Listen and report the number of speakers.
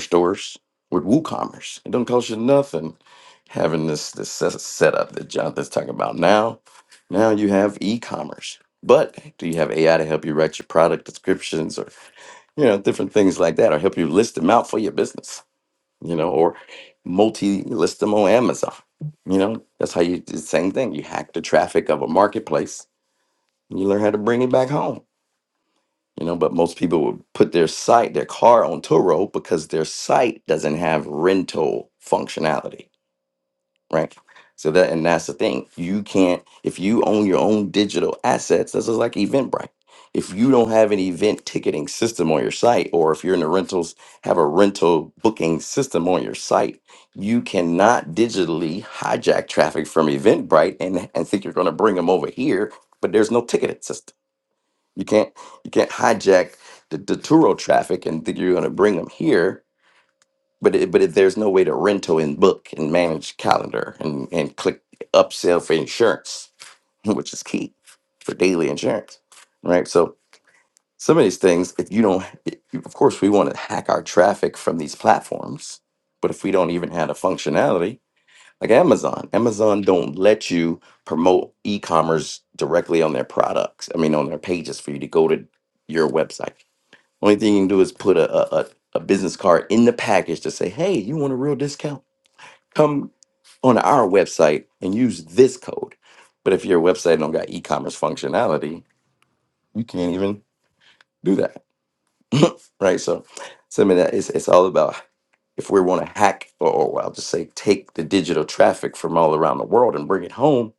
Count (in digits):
1